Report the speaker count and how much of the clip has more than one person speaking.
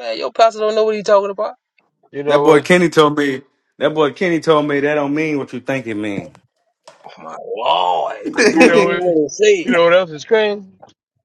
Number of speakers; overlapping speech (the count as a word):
three, about 11%